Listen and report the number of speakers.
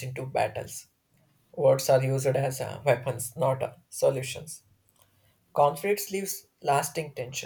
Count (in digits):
1